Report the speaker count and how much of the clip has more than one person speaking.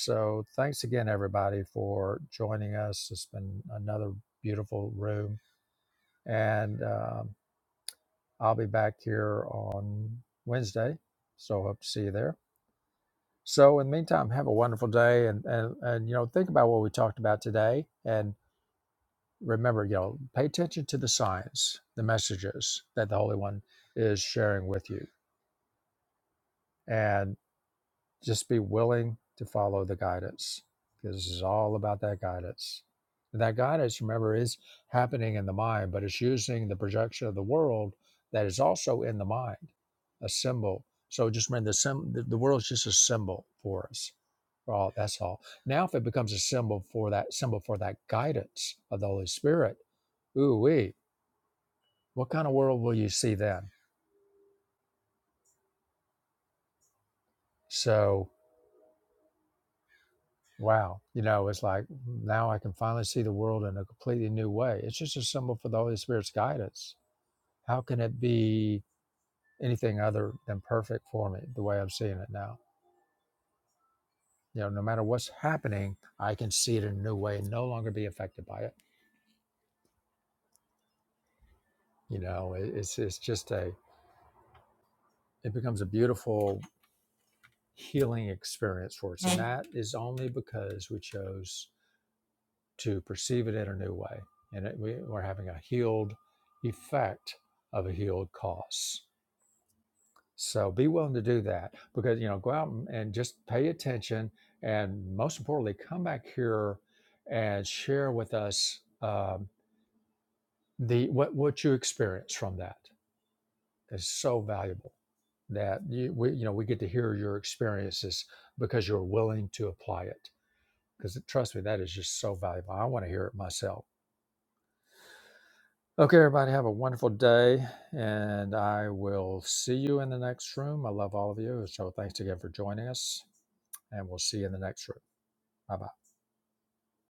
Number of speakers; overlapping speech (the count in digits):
1, no overlap